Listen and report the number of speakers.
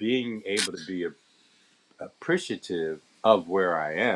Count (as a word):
one